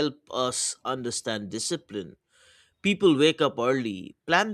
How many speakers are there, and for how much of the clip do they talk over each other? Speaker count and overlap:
1, no overlap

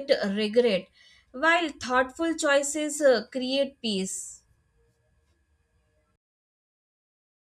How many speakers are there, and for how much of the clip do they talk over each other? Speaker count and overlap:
1, no overlap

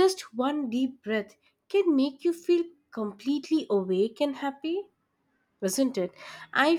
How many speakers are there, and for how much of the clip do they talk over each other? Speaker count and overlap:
1, no overlap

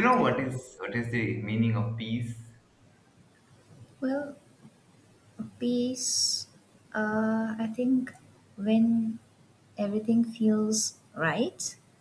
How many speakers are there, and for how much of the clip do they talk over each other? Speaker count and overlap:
2, about 3%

